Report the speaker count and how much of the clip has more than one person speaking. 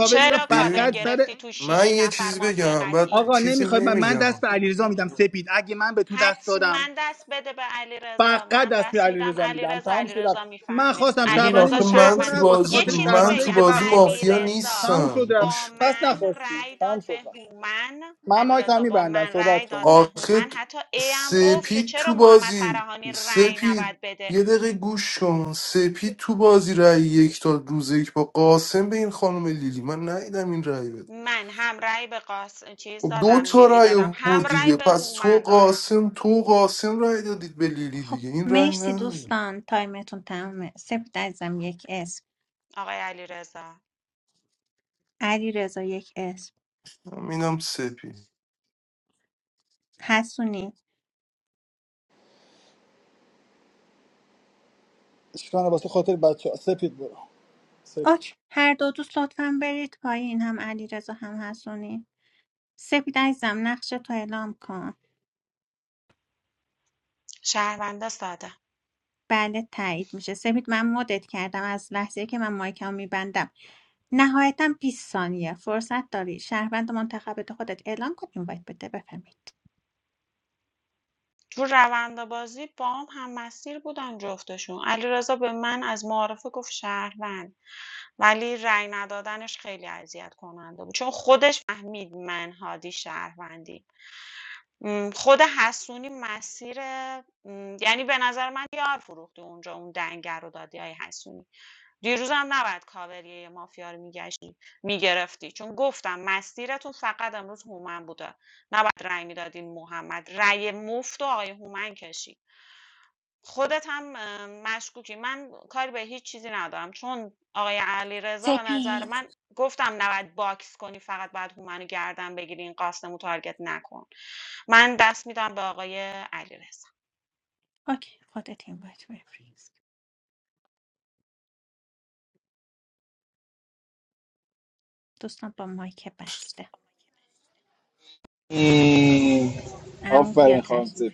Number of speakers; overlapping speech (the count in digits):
5, about 18%